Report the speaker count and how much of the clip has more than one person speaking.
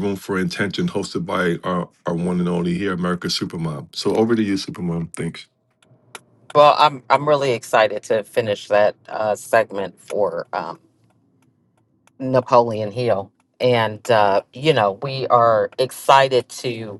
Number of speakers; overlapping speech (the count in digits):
2, no overlap